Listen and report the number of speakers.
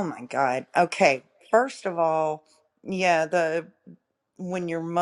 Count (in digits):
1